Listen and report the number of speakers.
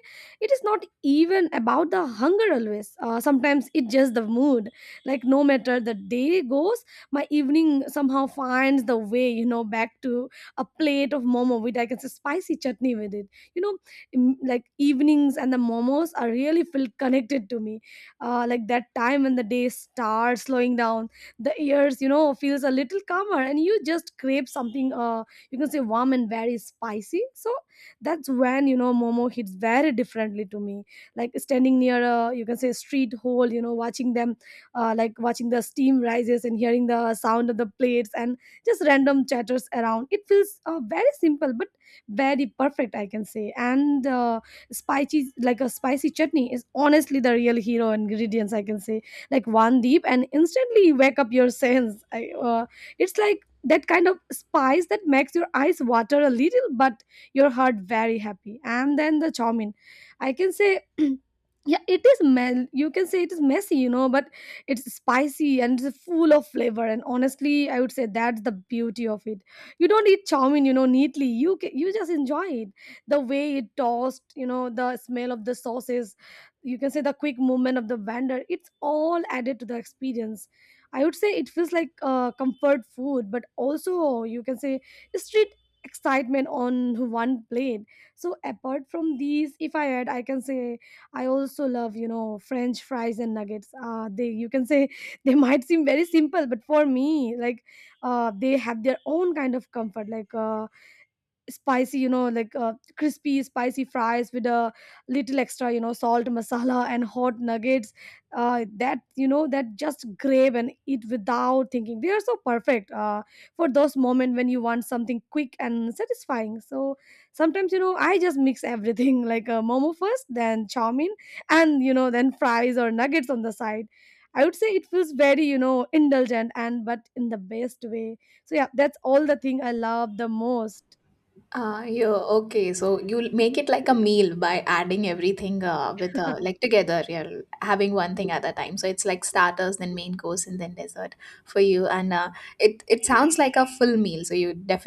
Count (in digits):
2